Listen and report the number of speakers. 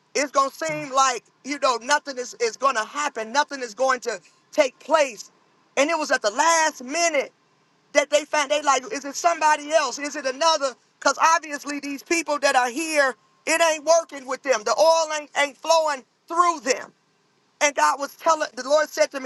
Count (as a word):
one